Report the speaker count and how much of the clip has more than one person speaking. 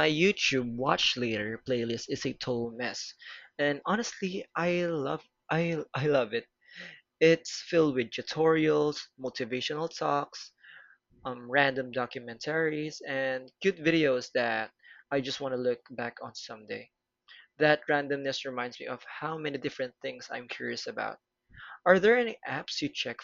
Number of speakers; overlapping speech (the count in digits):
1, no overlap